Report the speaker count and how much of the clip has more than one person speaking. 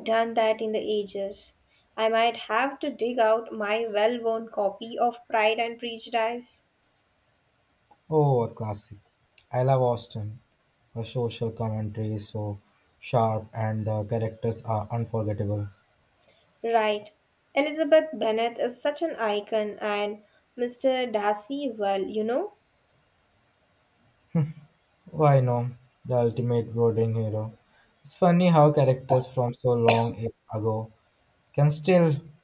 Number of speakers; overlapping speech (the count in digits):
2, no overlap